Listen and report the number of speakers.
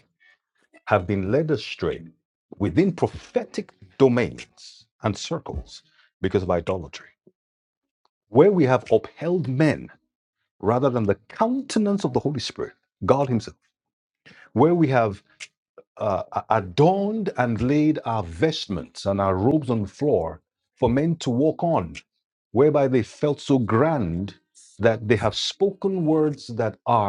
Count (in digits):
1